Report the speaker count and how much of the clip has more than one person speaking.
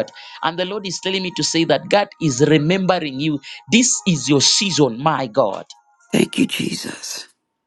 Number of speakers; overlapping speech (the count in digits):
2, no overlap